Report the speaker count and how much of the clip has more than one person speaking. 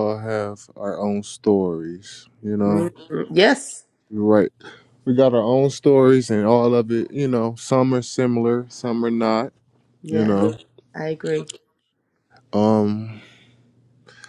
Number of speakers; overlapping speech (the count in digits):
2, about 4%